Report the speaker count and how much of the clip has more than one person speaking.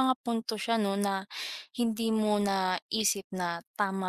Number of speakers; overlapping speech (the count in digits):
1, no overlap